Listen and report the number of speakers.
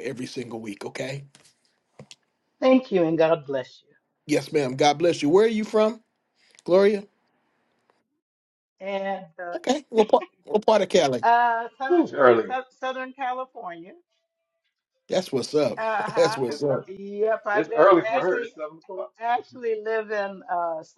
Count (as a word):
three